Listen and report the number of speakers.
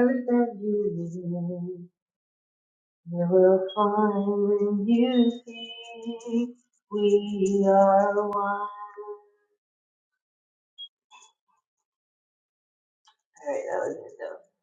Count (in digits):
1